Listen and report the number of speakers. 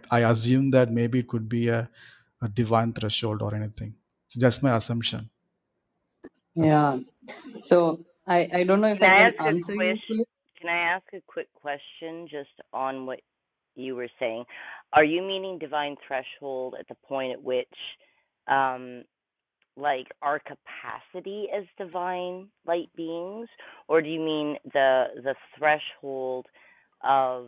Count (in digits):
3